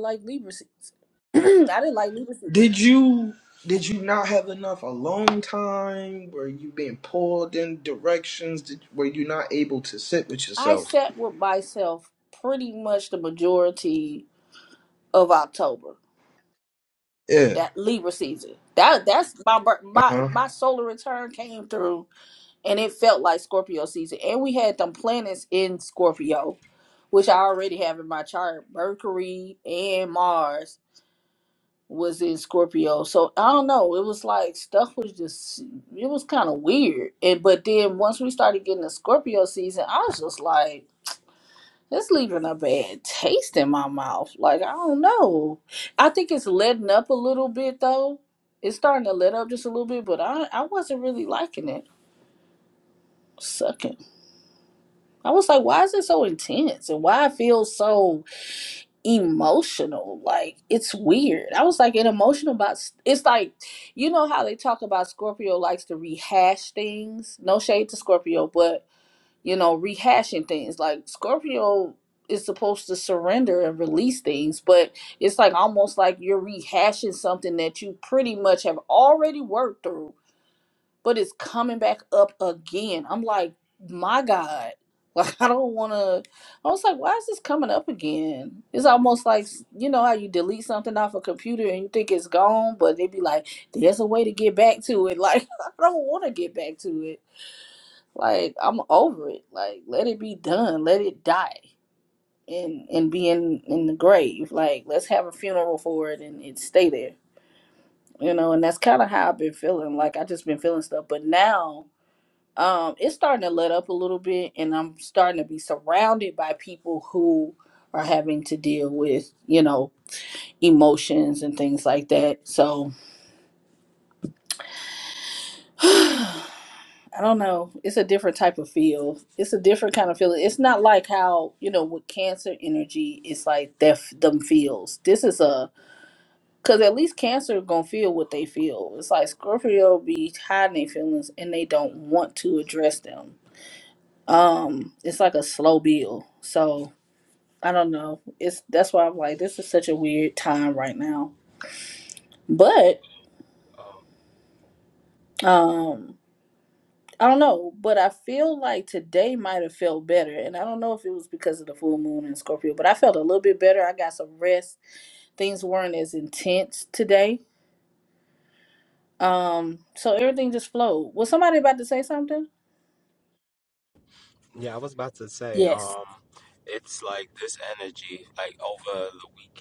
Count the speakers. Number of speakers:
3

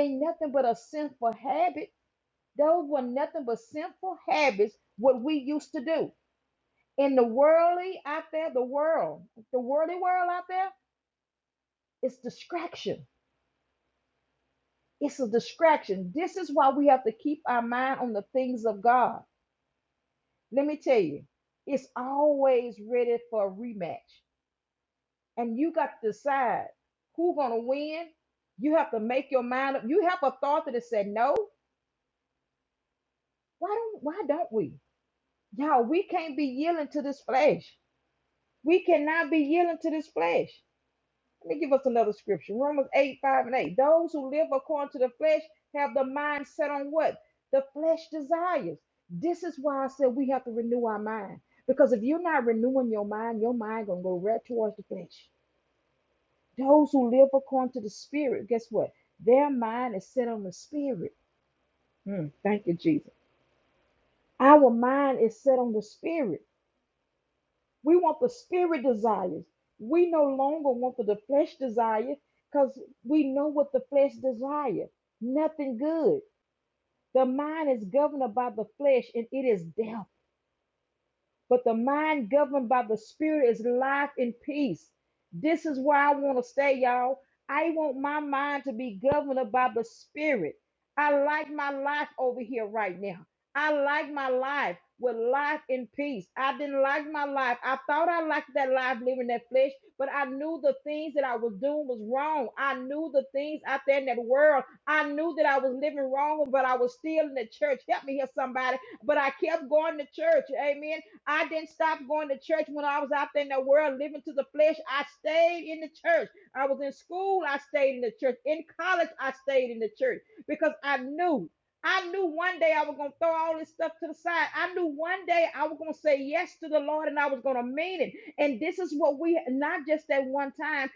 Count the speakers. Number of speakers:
1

